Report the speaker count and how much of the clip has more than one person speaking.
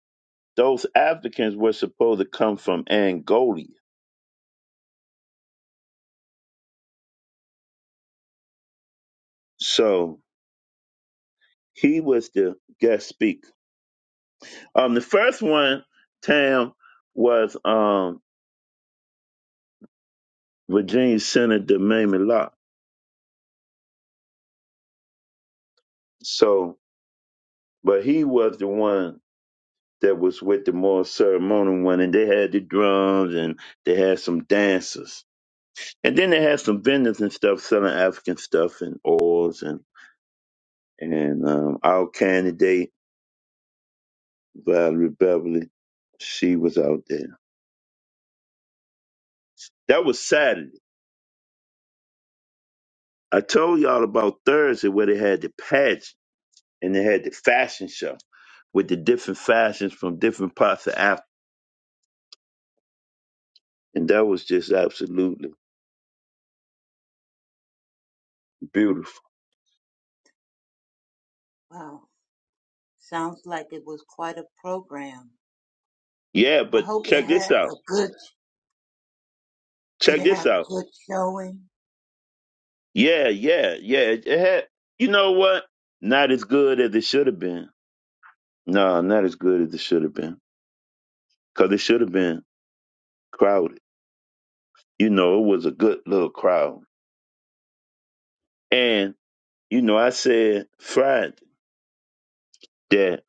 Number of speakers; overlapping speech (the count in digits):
2, about 2%